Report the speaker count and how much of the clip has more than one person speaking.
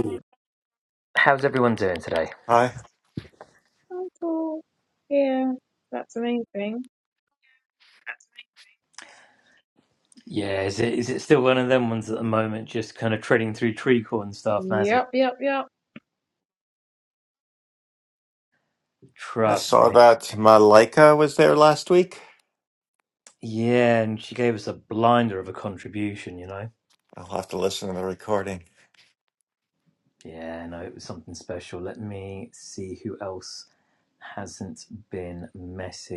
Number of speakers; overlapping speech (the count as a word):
three, about 3%